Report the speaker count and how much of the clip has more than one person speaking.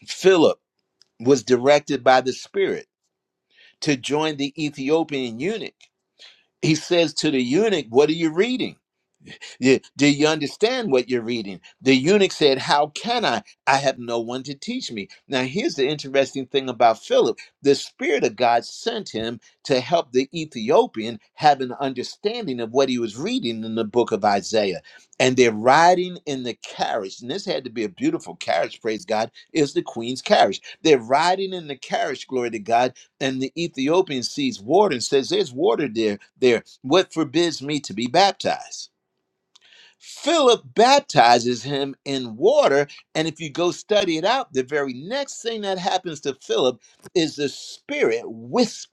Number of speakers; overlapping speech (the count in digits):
1, no overlap